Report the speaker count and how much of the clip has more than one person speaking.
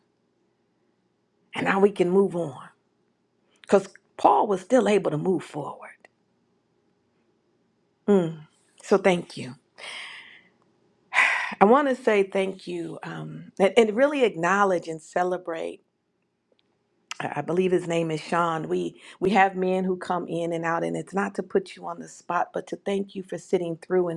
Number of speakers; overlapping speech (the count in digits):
1, no overlap